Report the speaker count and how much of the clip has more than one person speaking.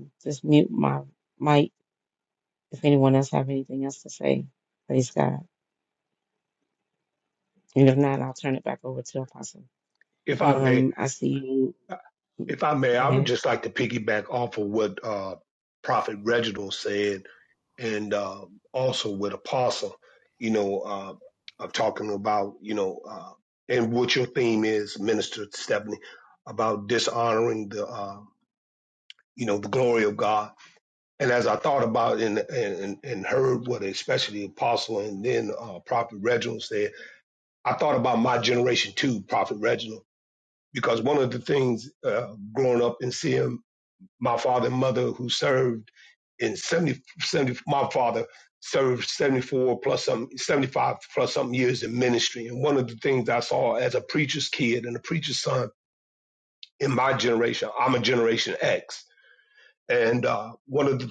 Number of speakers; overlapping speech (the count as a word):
two, about 1%